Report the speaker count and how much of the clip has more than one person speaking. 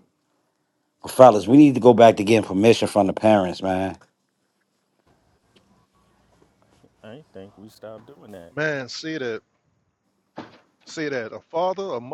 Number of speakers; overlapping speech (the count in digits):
3, no overlap